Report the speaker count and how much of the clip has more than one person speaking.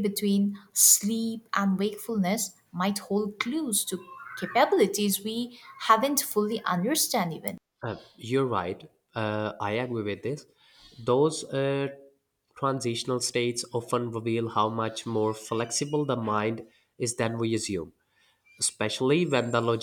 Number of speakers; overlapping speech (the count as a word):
two, no overlap